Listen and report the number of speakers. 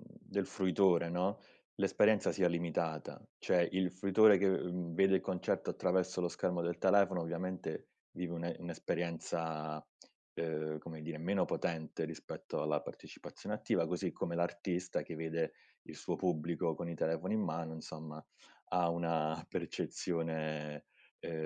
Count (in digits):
1